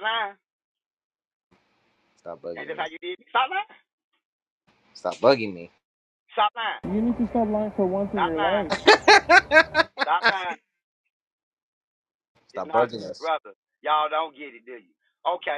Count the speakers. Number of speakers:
3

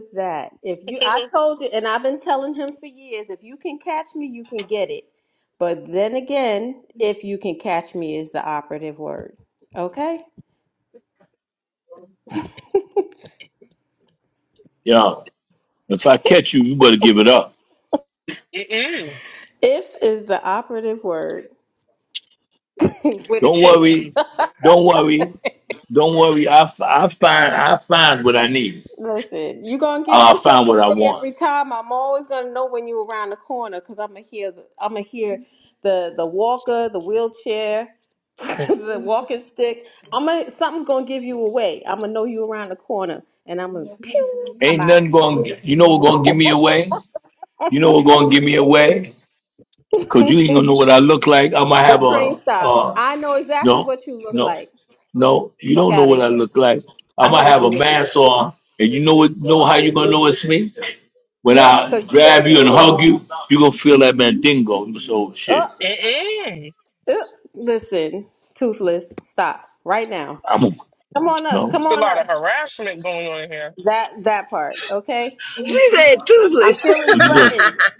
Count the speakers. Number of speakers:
4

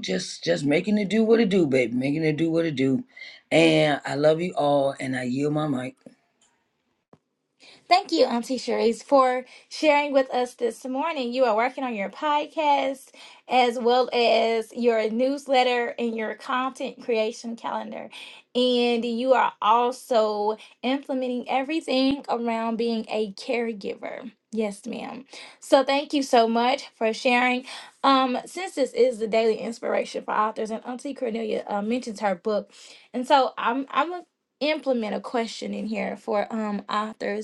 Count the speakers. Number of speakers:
2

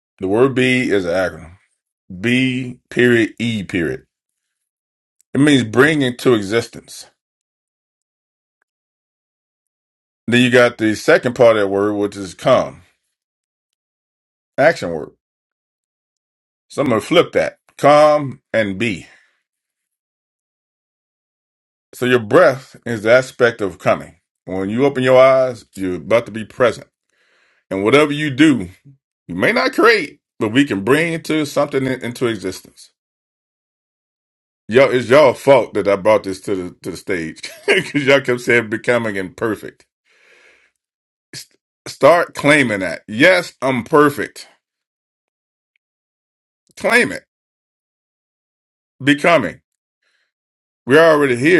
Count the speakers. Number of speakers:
1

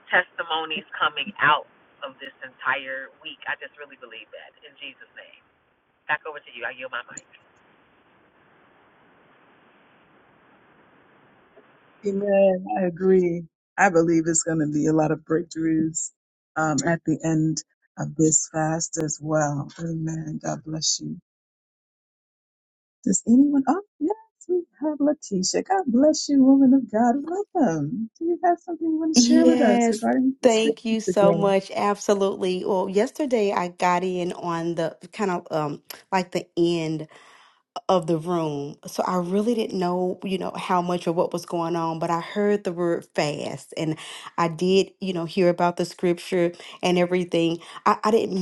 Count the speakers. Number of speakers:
3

